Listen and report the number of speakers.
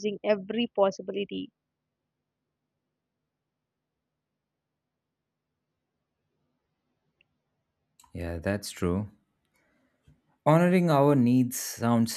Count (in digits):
2